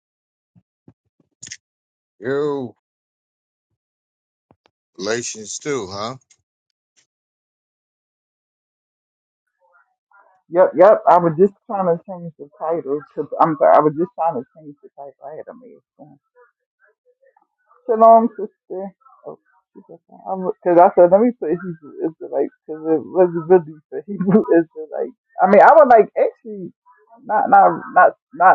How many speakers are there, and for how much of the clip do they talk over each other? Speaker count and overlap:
2, no overlap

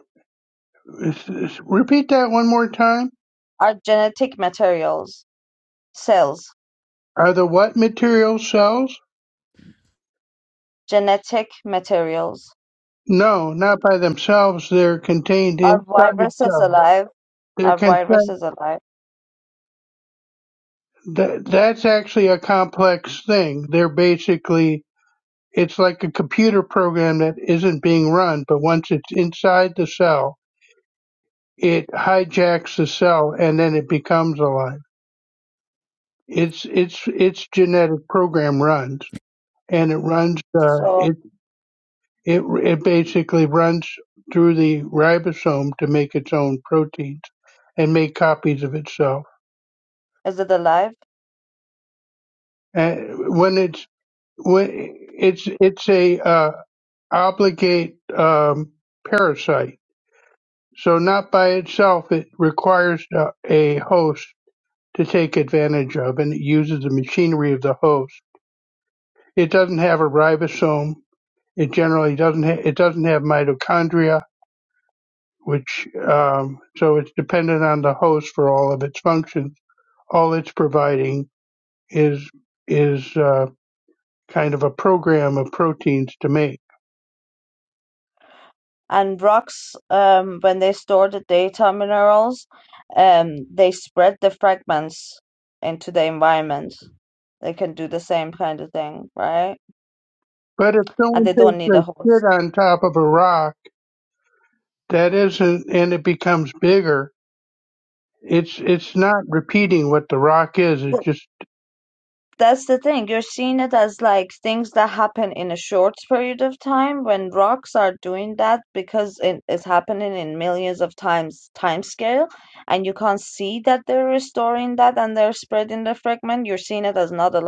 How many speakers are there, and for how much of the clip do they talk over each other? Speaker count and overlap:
2, about 2%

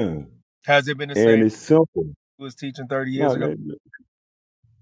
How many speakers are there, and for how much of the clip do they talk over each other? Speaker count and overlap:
2, about 13%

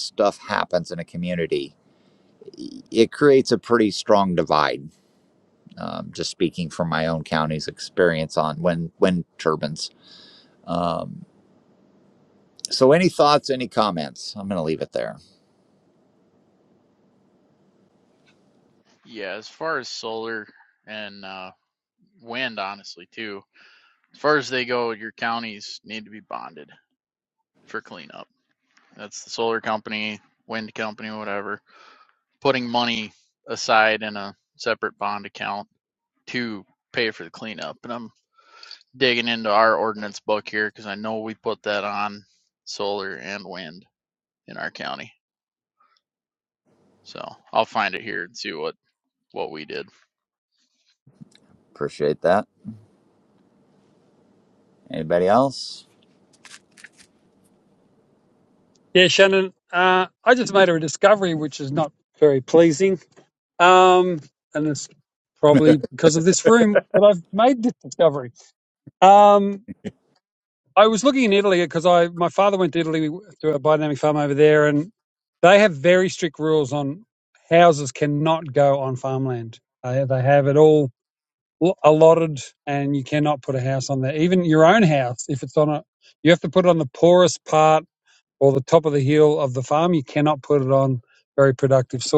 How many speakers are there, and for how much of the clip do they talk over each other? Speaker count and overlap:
3, no overlap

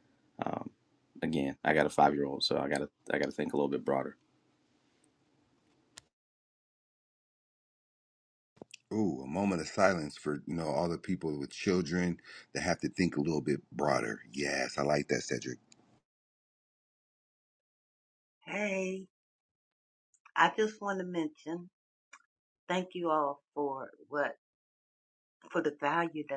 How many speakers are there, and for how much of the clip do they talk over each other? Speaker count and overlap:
3, no overlap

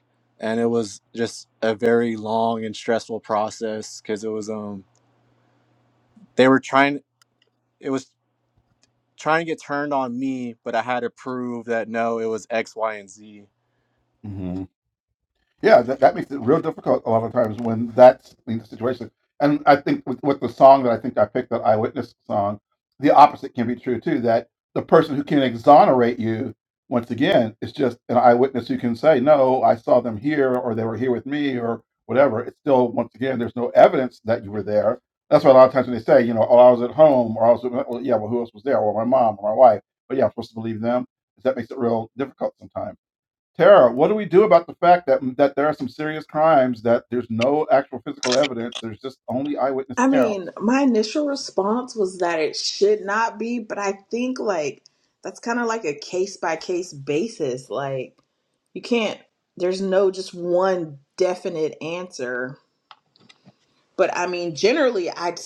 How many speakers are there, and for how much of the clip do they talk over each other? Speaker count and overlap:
3, about 1%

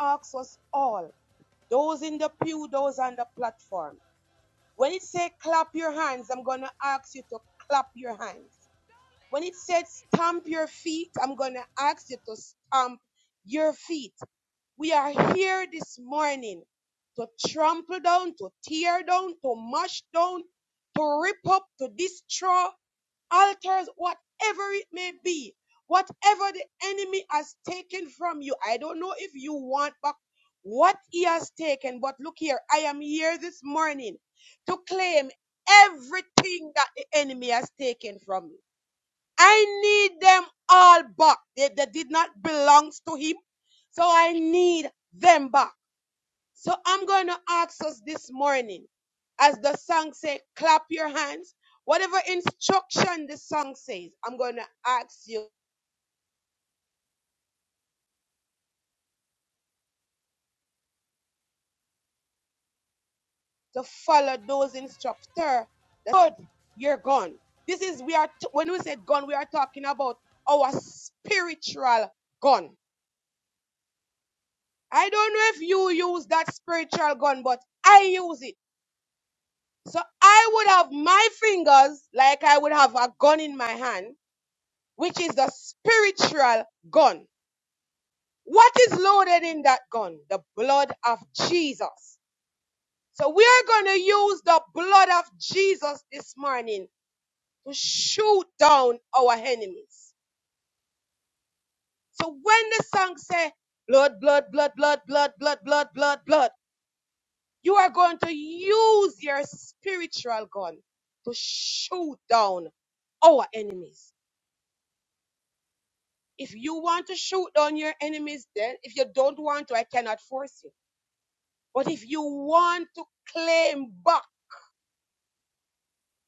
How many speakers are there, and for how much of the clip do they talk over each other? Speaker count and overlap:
1, no overlap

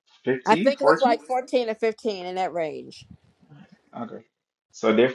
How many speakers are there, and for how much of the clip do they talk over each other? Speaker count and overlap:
2, about 14%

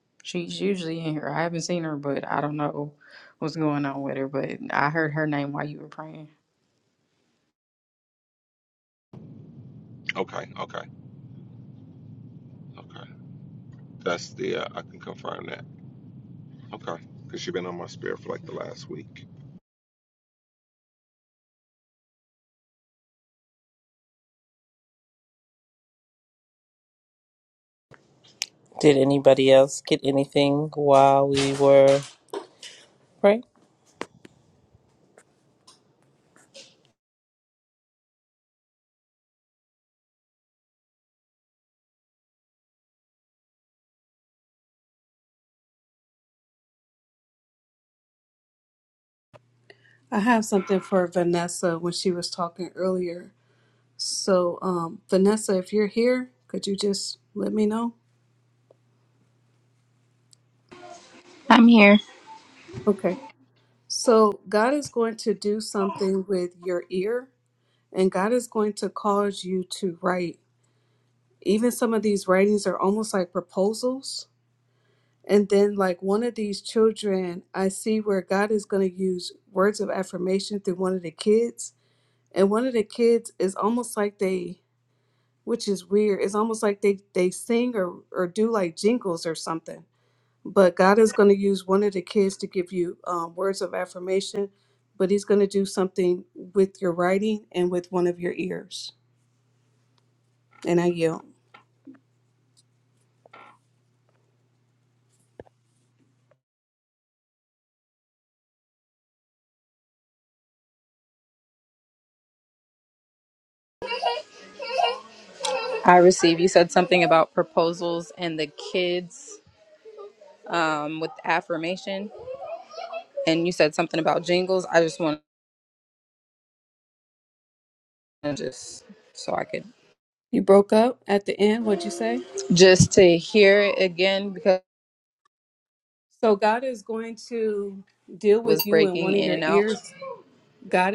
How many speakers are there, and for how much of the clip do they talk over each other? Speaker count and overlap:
5, about 1%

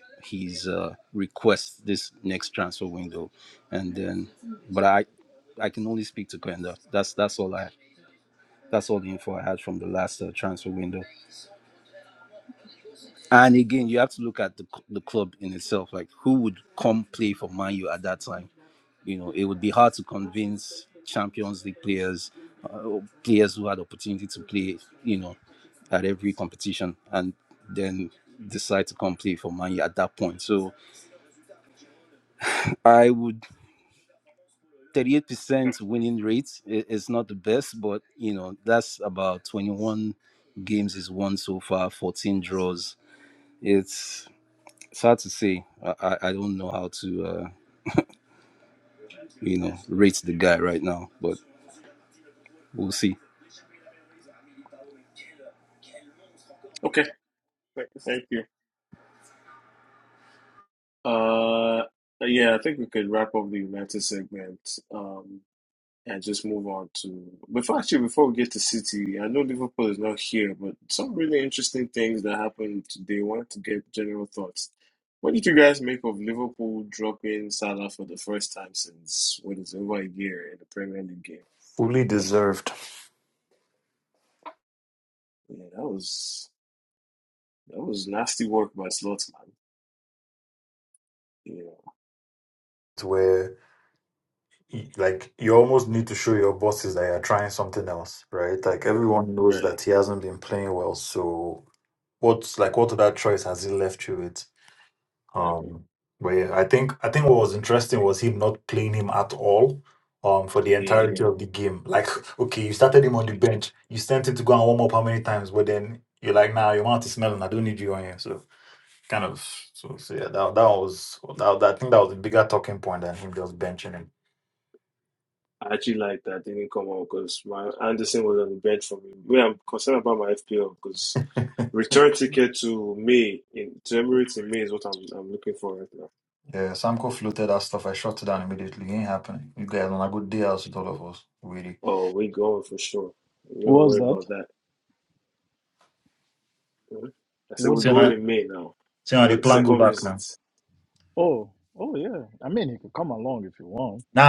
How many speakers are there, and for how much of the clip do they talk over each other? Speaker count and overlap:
4, about 2%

